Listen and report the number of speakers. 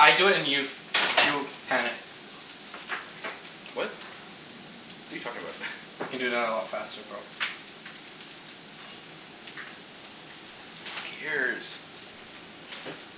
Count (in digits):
2